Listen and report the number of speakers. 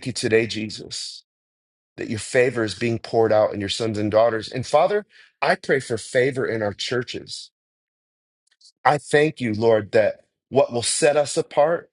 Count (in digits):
1